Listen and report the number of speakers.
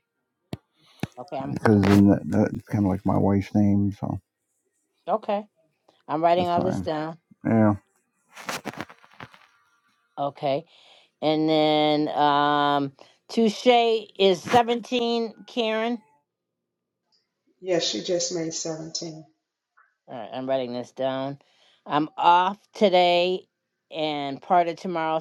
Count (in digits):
3